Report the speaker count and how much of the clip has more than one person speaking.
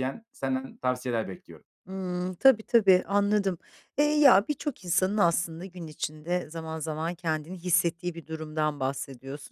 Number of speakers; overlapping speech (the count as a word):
two, no overlap